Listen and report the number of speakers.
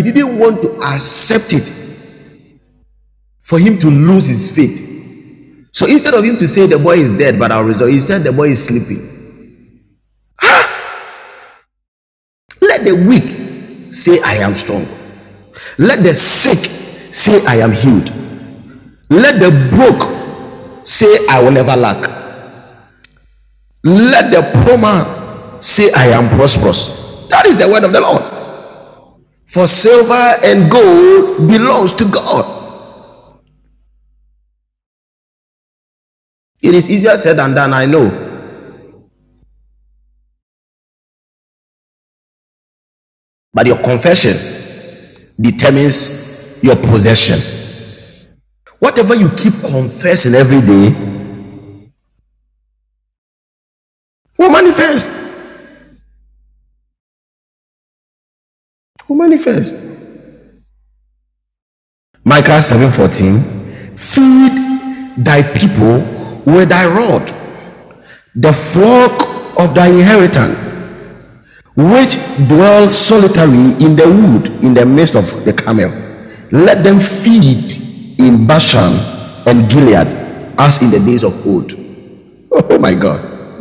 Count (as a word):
one